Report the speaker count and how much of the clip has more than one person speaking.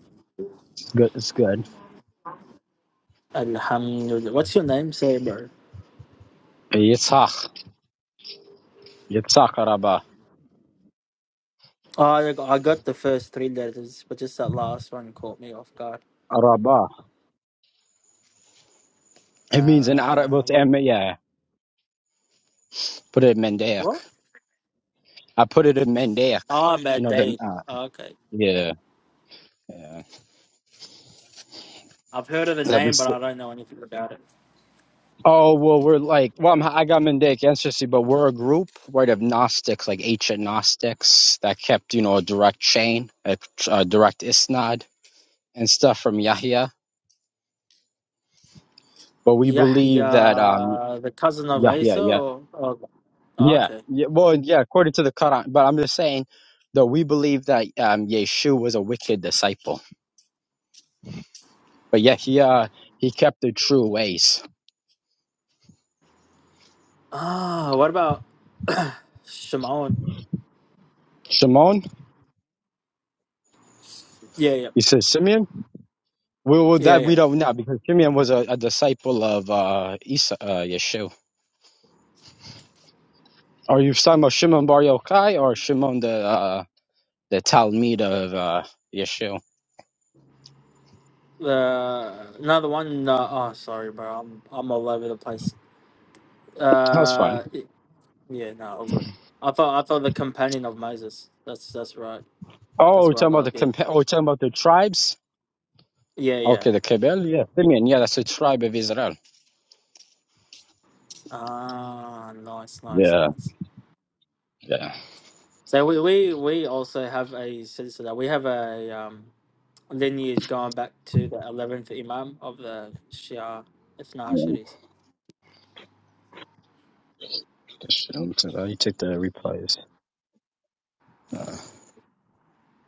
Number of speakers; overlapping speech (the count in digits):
2, about 5%